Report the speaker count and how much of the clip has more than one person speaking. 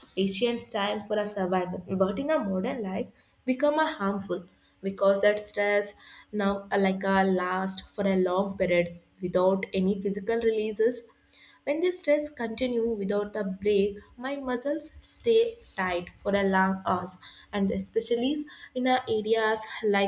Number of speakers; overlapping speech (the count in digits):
1, no overlap